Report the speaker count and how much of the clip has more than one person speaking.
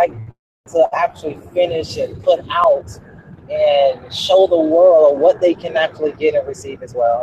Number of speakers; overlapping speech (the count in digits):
1, no overlap